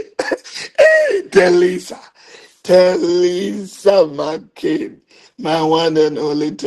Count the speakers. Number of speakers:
one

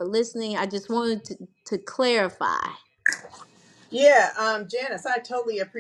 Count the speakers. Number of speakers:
two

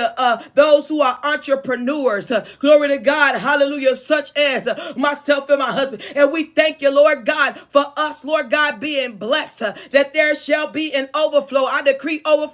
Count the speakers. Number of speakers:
one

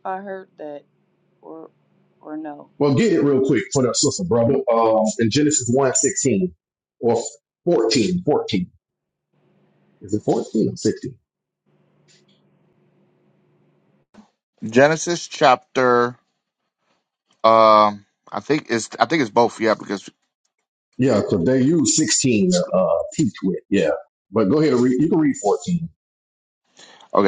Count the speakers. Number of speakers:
three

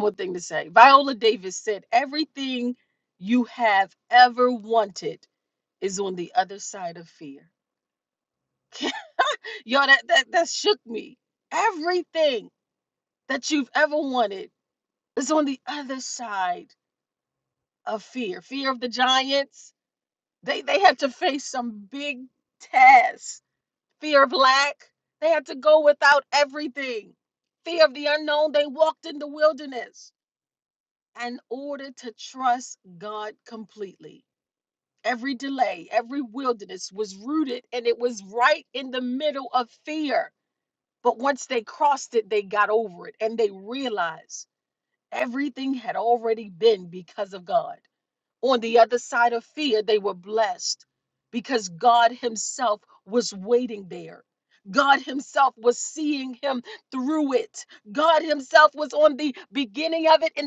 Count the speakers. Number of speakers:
one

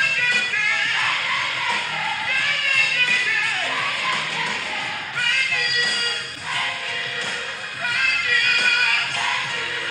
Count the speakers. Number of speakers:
zero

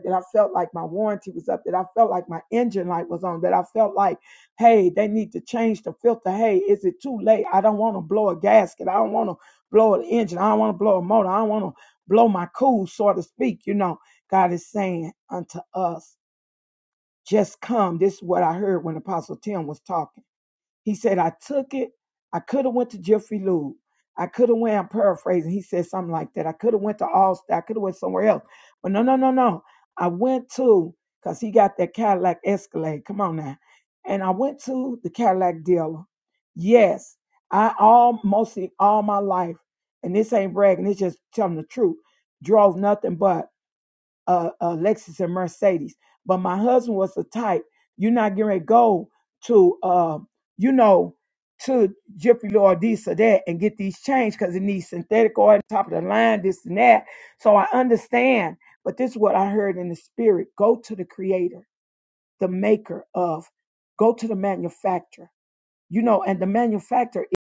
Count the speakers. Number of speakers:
one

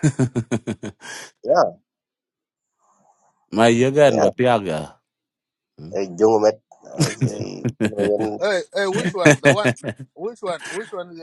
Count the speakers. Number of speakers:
three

